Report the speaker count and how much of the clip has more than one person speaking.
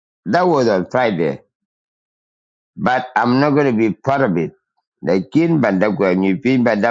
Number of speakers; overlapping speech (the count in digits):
1, no overlap